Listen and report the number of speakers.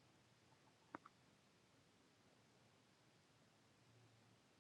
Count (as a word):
zero